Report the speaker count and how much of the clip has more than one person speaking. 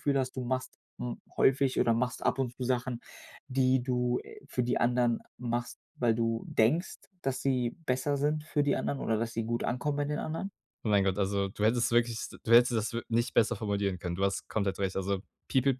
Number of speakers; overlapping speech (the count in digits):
2, no overlap